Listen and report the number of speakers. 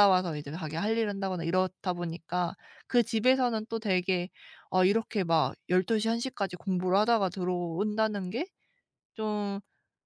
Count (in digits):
1